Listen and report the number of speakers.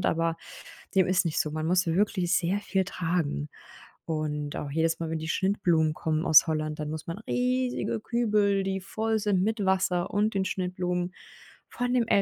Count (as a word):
one